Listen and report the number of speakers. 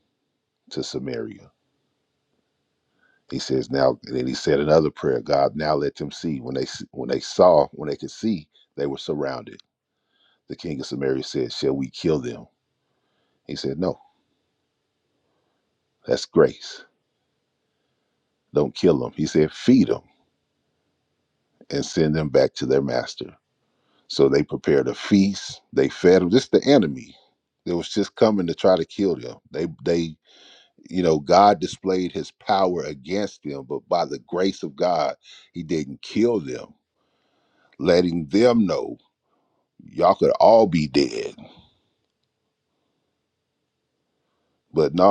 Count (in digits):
1